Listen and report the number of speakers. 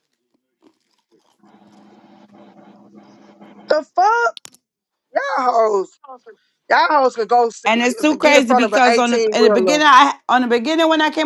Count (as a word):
two